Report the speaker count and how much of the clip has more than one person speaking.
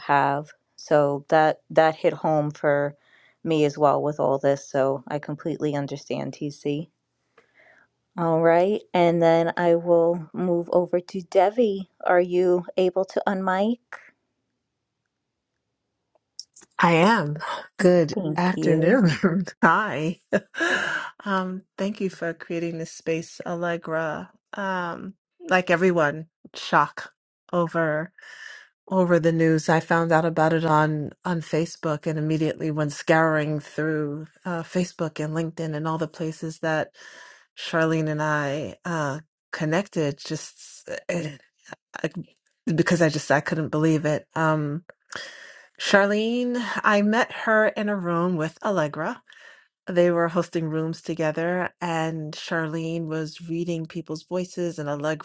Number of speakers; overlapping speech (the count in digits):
2, about 2%